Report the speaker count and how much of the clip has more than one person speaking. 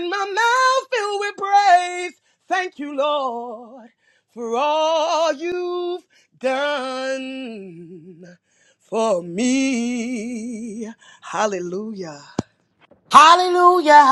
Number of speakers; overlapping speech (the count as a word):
two, no overlap